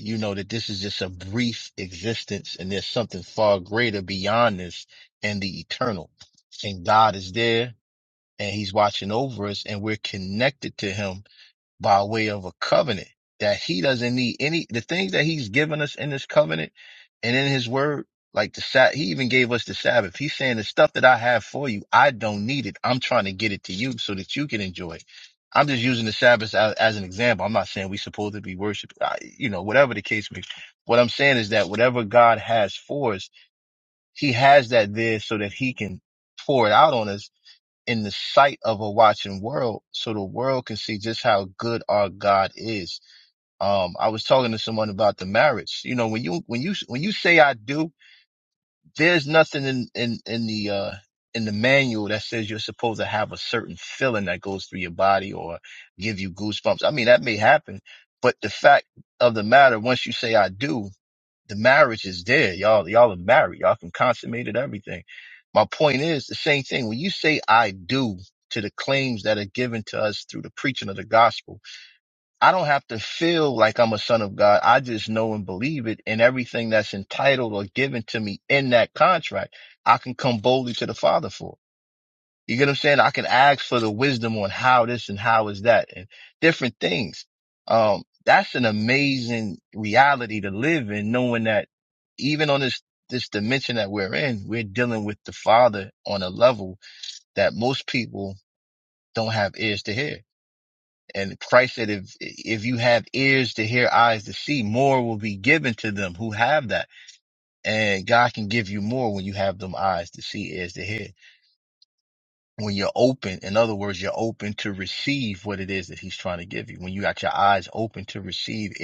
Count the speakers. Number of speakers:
1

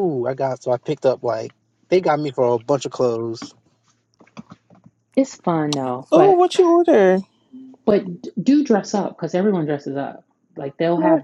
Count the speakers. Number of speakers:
3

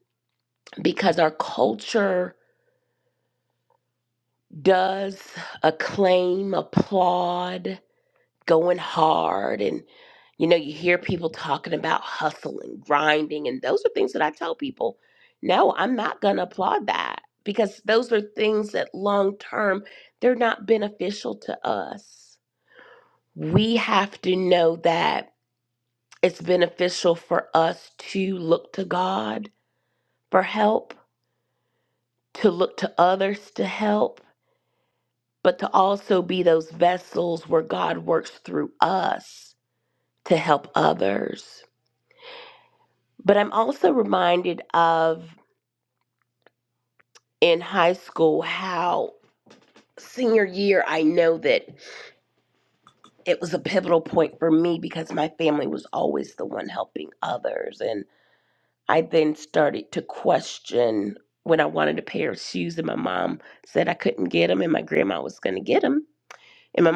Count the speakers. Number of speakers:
1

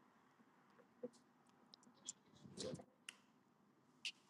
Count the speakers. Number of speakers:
0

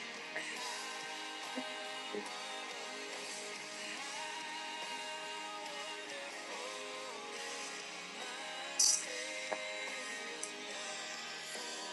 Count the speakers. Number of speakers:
0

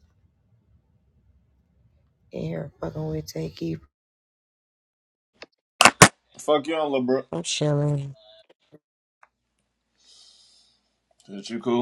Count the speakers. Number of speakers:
2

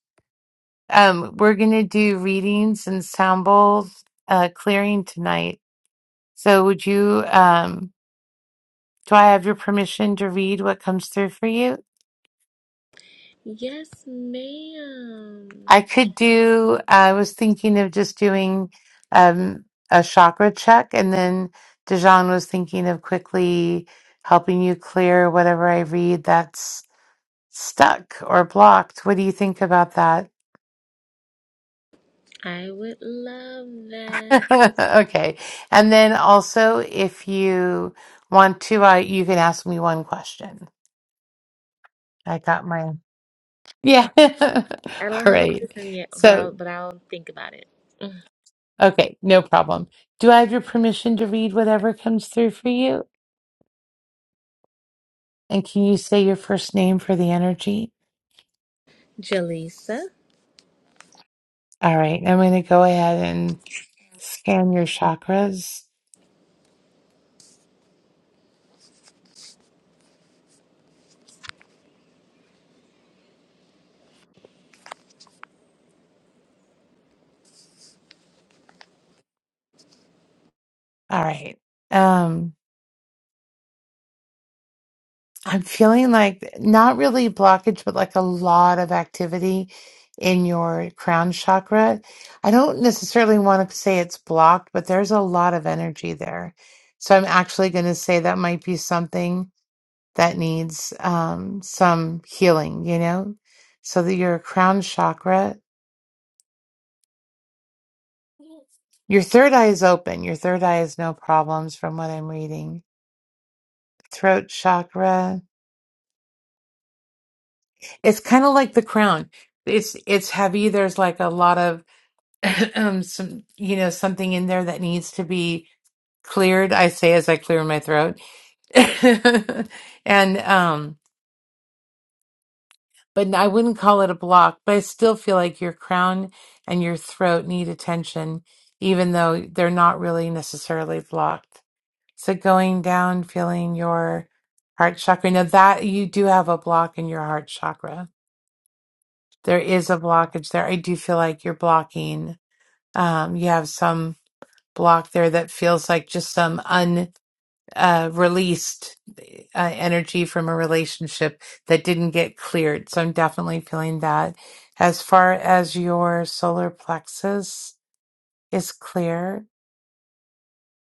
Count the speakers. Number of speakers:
2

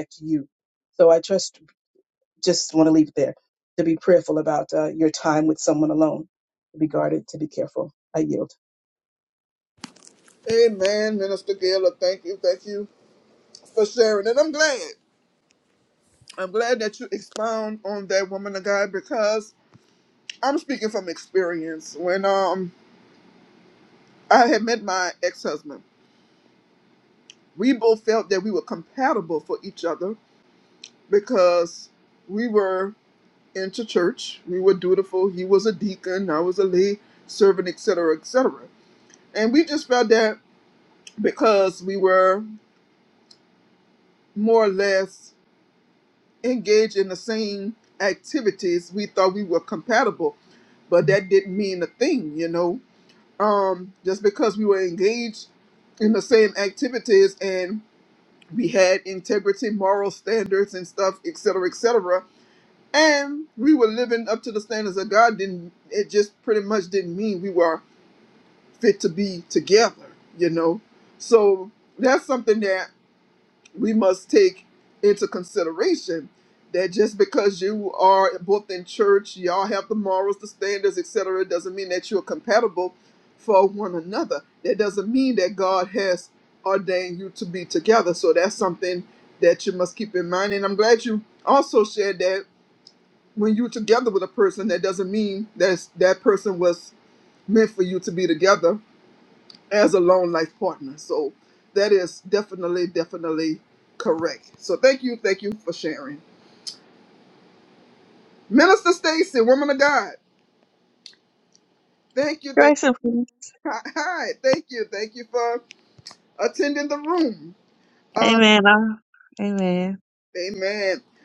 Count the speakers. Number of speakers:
3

